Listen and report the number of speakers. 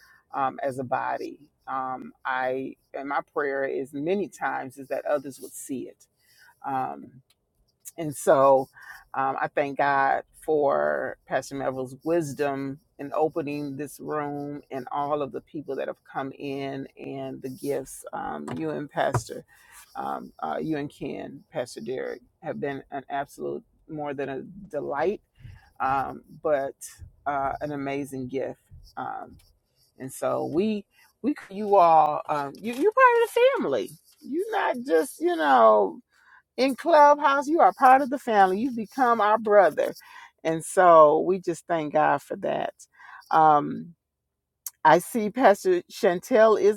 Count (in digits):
1